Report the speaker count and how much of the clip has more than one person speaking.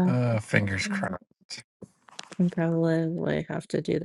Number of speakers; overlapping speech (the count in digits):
2, about 2%